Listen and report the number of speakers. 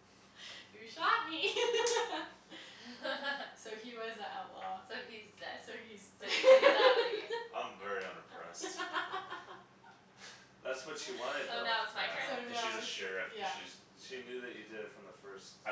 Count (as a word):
four